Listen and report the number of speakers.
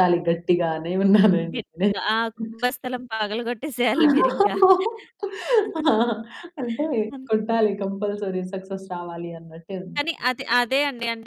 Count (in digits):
2